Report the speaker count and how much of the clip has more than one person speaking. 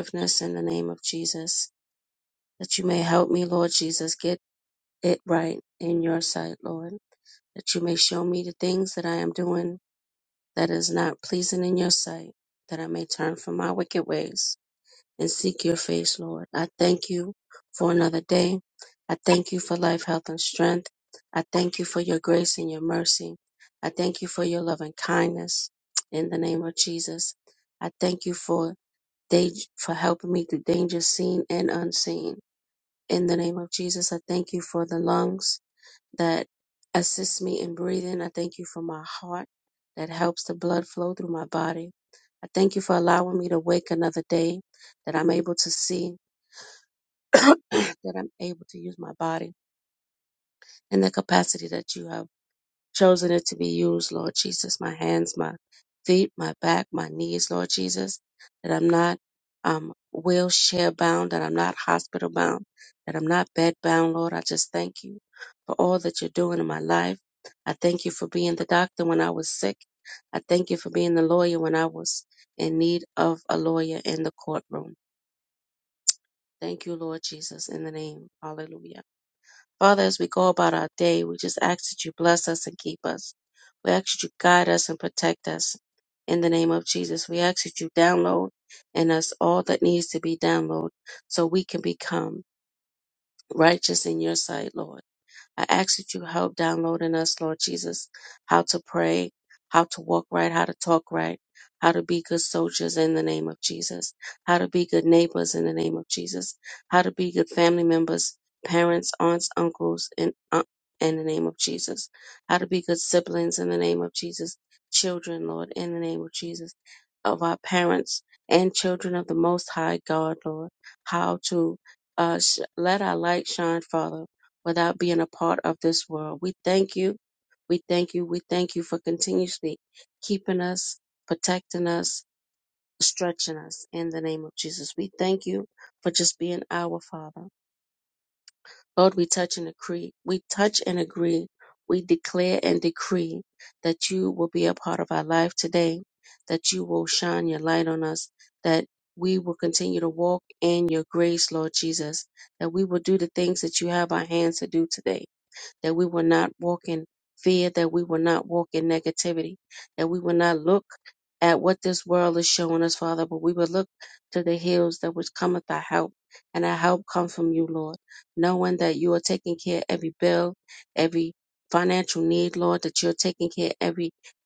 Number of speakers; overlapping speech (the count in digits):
1, no overlap